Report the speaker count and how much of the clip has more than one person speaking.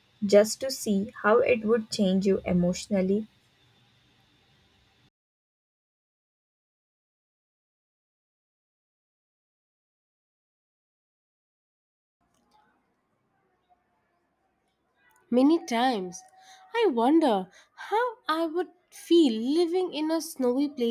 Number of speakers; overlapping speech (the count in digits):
2, no overlap